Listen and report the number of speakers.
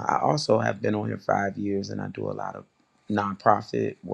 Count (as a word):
one